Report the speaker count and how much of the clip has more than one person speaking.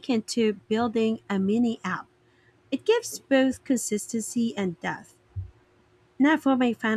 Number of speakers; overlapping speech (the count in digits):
1, no overlap